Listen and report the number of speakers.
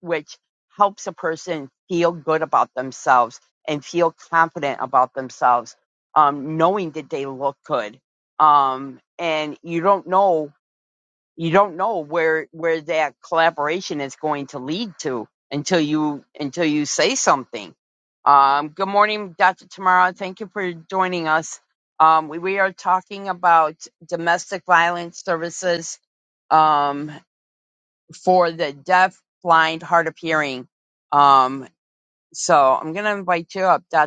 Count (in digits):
1